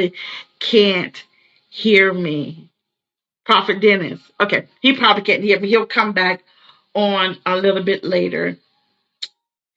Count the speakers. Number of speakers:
one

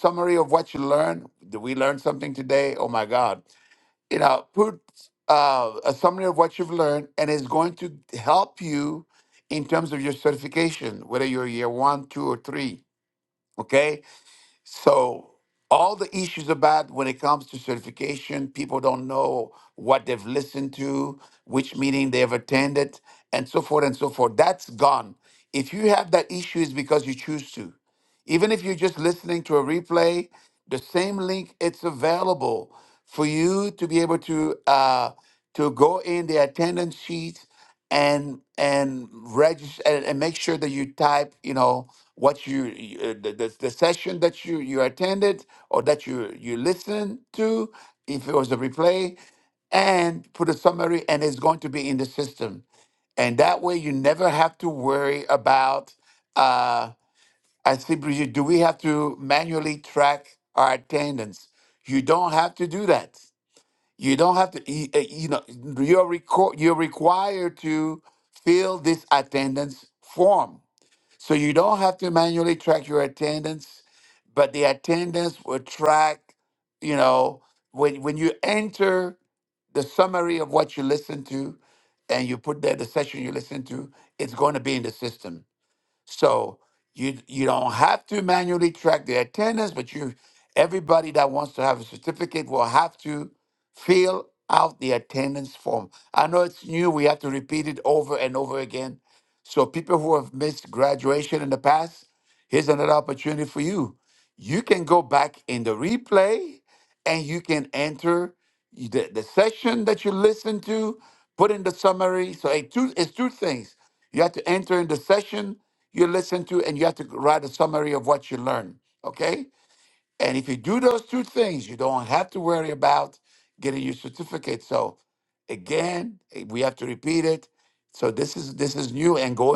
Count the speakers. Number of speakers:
one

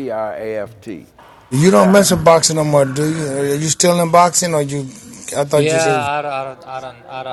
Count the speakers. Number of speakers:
three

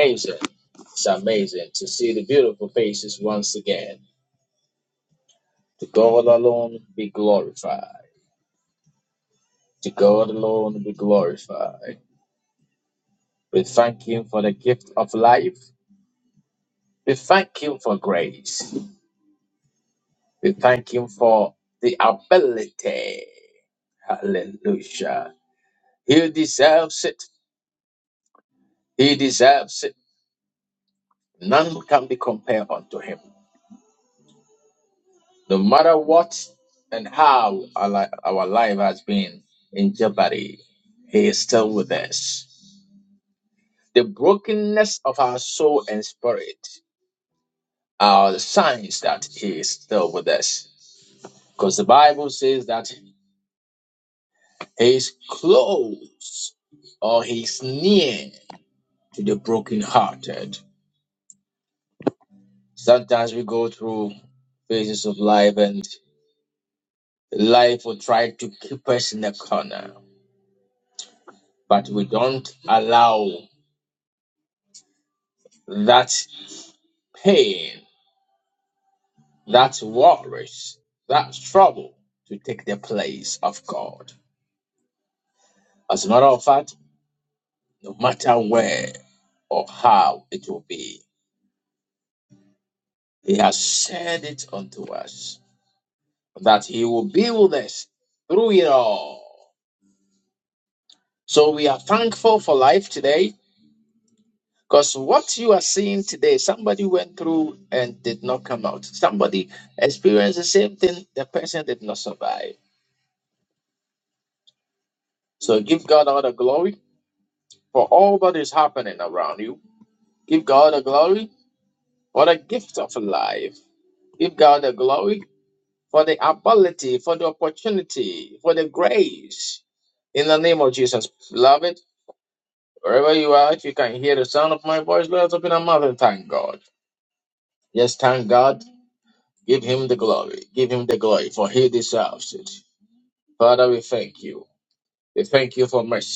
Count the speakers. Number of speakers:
one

